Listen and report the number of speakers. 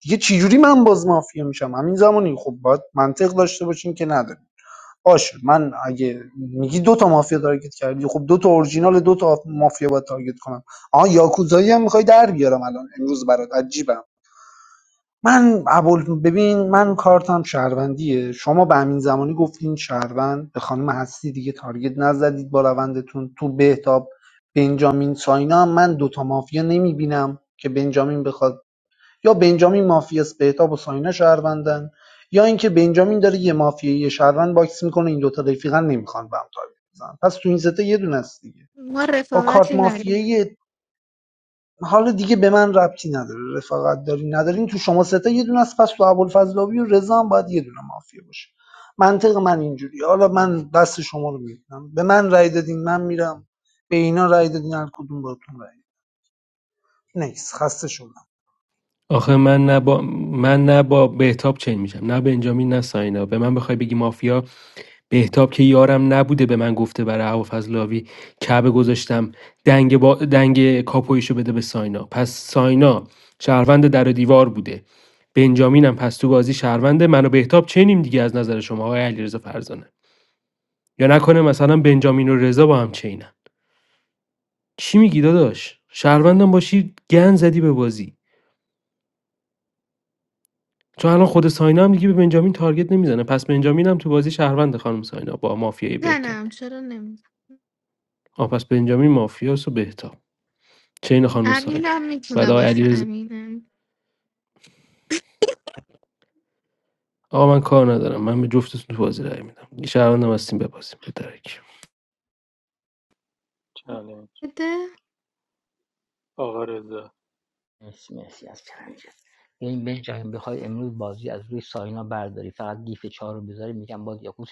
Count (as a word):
five